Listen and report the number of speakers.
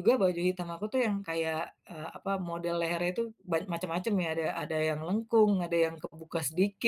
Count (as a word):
one